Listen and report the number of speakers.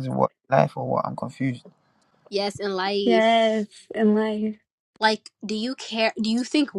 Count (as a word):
three